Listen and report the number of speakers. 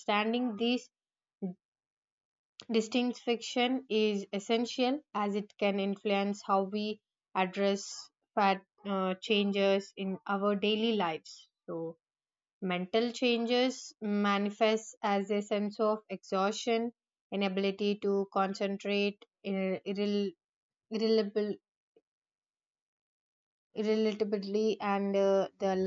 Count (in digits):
1